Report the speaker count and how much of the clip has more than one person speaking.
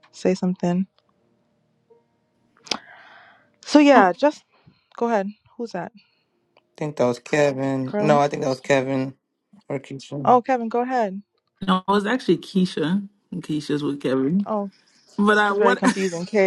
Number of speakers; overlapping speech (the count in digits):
3, about 5%